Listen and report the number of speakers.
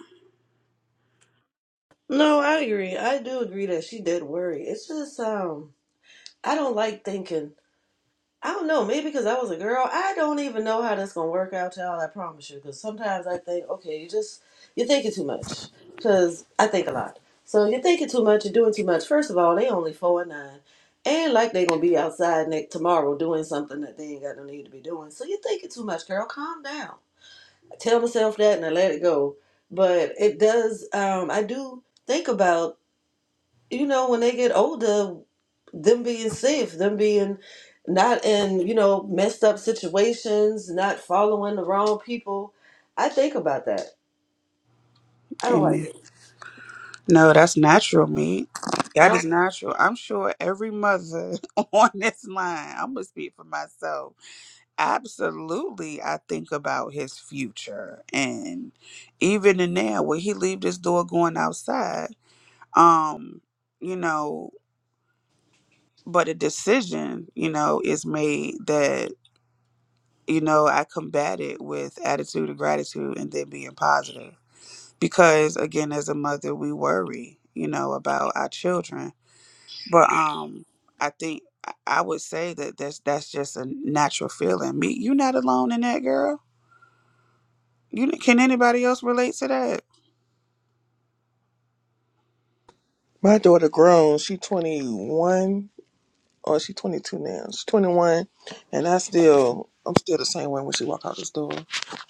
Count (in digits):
3